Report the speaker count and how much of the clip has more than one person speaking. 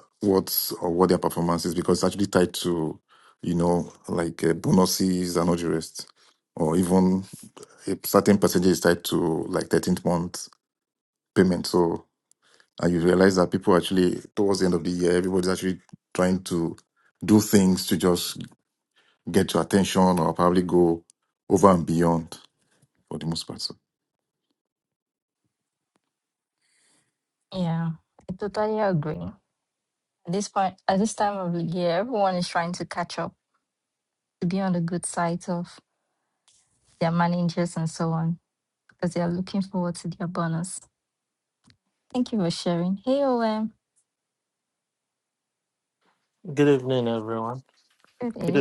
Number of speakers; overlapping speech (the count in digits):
3, under 1%